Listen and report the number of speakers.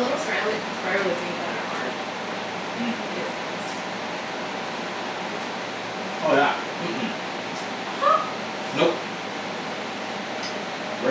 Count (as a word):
two